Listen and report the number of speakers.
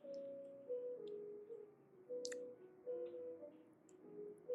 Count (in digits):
0